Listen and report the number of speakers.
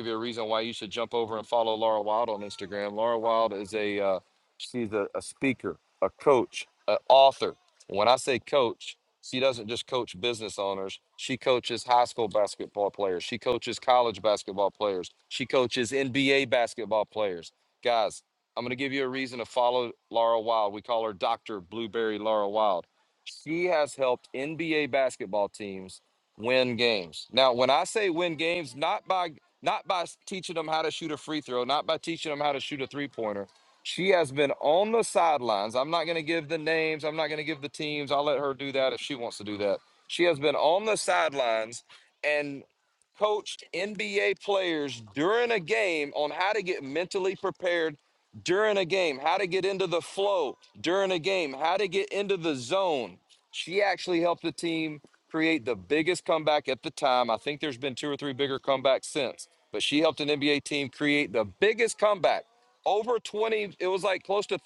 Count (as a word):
one